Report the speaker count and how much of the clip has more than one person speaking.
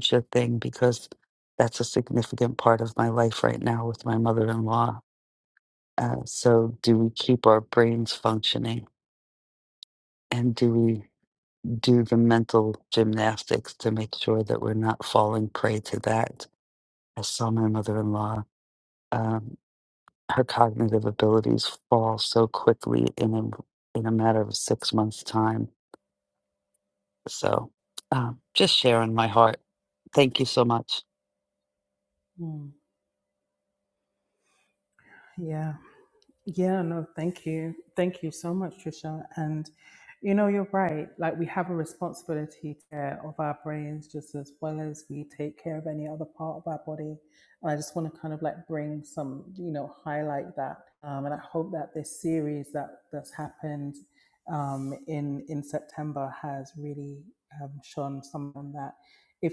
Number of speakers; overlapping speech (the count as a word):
two, no overlap